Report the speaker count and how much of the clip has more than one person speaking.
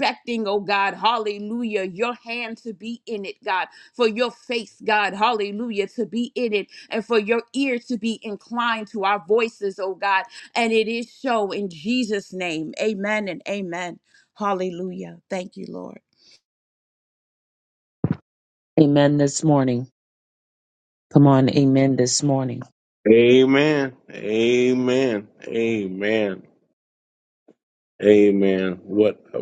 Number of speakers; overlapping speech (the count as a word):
three, no overlap